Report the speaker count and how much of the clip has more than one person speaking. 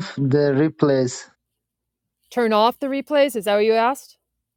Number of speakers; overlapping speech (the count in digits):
2, no overlap